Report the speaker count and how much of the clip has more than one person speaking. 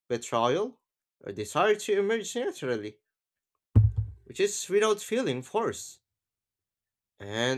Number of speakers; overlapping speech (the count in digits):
1, no overlap